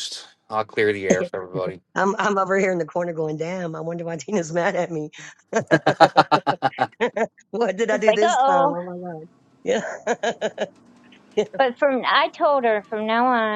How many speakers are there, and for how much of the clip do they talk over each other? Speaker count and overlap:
three, about 6%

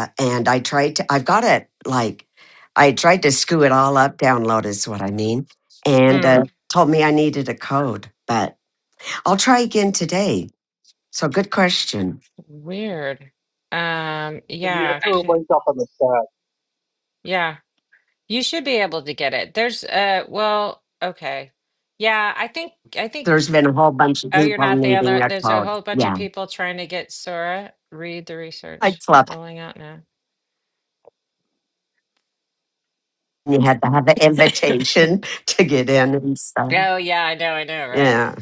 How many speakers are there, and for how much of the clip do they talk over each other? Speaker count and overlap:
three, about 10%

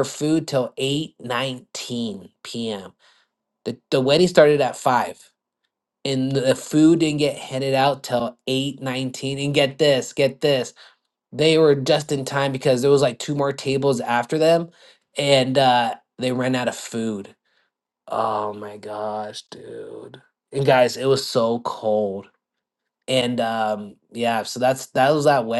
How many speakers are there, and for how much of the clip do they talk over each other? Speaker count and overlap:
one, no overlap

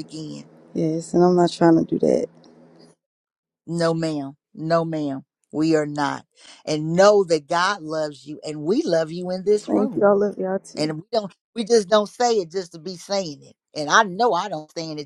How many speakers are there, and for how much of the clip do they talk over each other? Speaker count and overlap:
two, about 3%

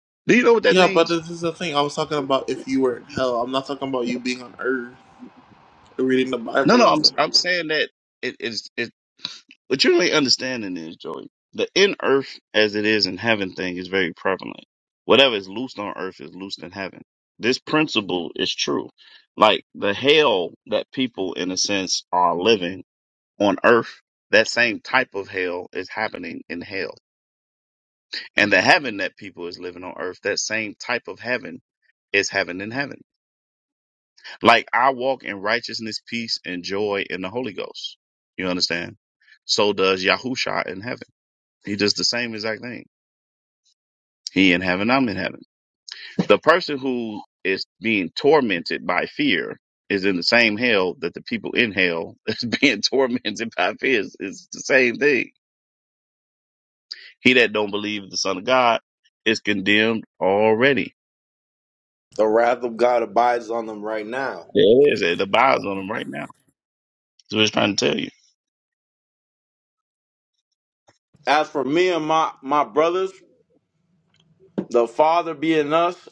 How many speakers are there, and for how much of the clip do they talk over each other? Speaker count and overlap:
three, about 1%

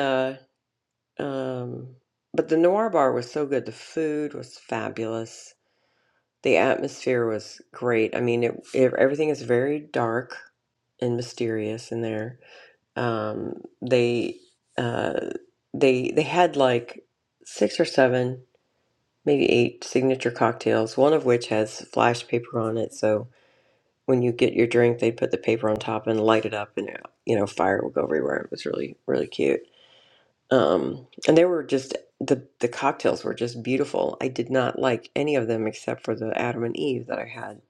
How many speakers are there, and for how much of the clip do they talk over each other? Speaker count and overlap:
one, no overlap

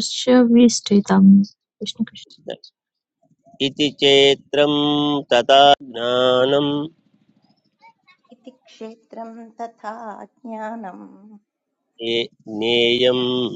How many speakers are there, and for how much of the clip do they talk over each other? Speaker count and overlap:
three, no overlap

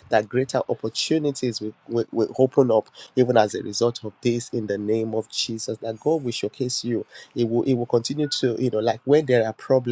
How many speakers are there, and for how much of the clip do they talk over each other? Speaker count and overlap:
one, no overlap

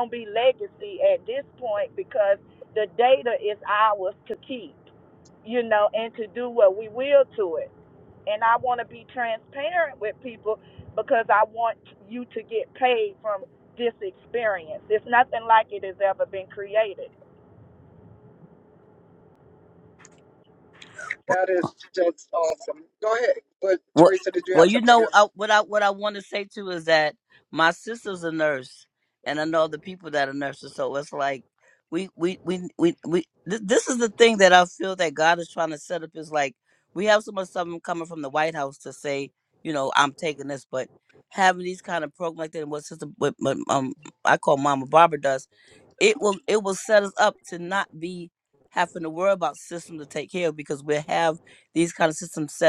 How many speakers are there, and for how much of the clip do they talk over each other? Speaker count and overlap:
three, about 2%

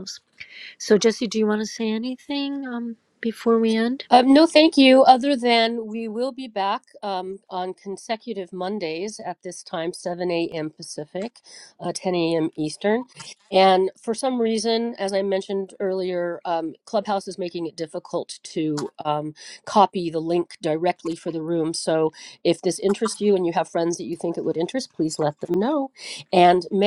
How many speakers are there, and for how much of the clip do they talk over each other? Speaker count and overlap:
two, no overlap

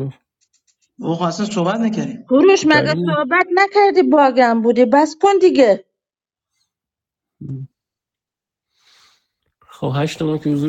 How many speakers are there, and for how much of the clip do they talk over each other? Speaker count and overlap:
three, about 3%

